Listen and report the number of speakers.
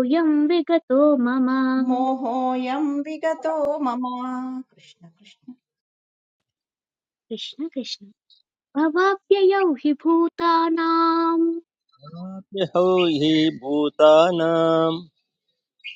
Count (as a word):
three